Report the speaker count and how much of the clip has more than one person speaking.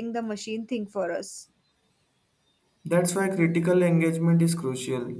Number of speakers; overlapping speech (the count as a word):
two, no overlap